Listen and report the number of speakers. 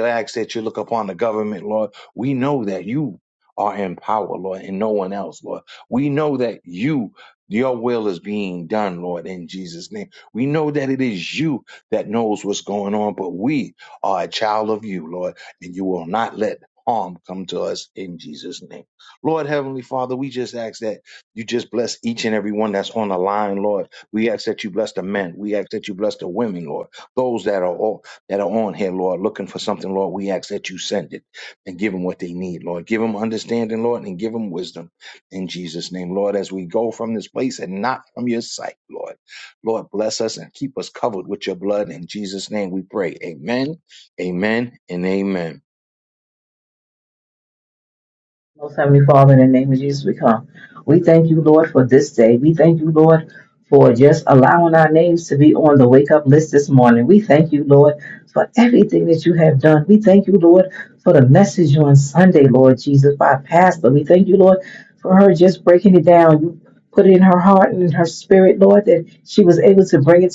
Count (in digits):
2